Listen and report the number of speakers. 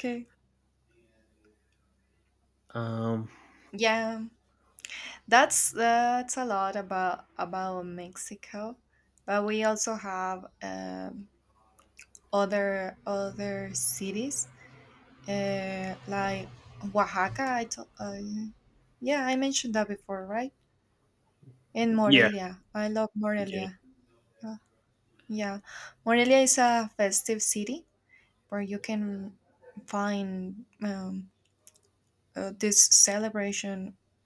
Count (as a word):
two